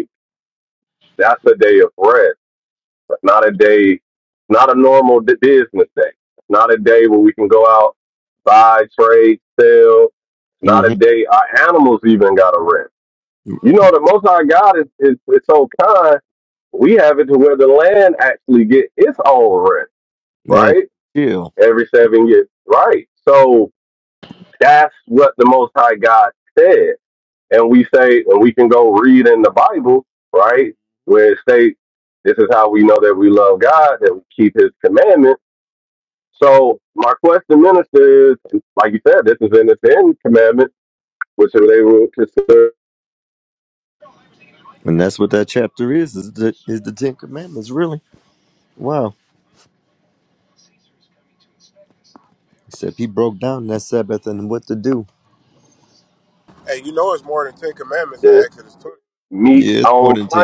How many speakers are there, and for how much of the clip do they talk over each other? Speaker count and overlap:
3, about 3%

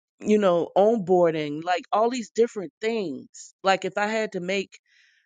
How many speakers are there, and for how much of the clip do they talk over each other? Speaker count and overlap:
1, no overlap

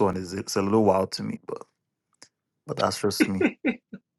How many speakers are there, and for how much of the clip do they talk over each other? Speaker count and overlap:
1, no overlap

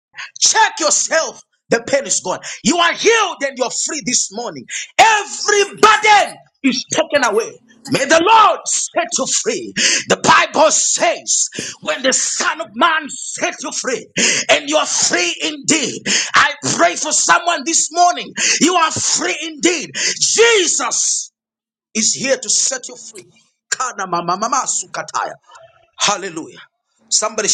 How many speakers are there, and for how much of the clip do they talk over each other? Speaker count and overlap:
1, no overlap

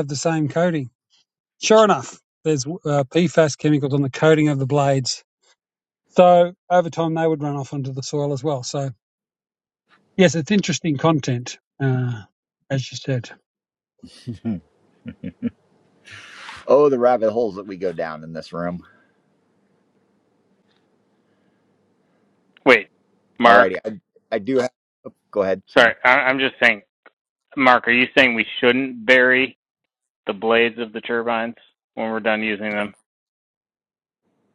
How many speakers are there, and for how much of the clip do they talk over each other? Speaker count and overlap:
3, about 1%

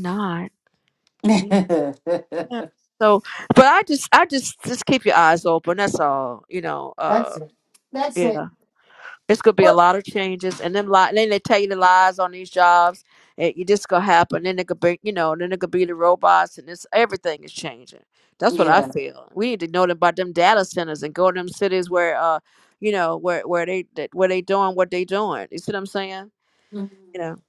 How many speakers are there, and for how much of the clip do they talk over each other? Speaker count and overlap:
2, about 4%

